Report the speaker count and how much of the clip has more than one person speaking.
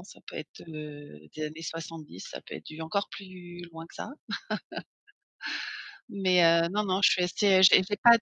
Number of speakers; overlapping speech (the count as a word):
one, no overlap